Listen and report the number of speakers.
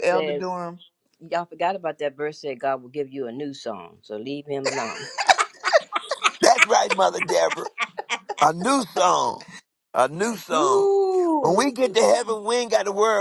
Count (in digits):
3